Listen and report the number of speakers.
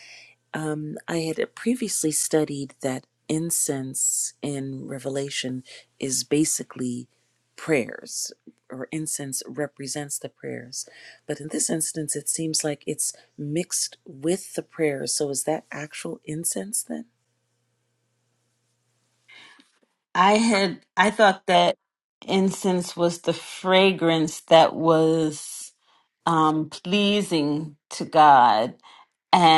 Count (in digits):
2